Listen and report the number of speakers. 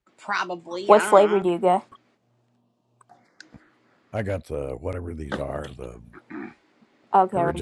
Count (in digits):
3